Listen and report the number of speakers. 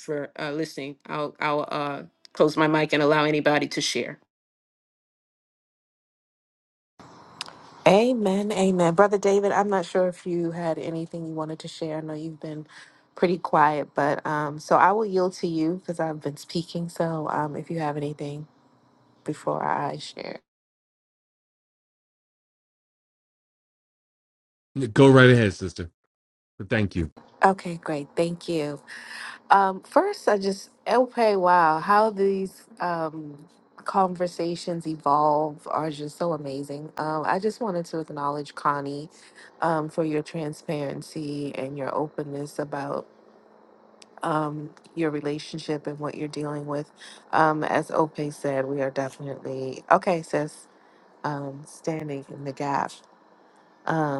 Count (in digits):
3